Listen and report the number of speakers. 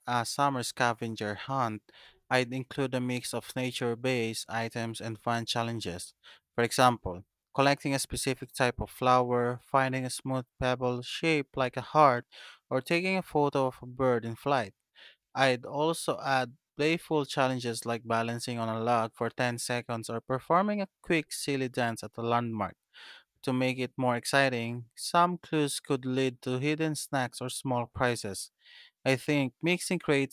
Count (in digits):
1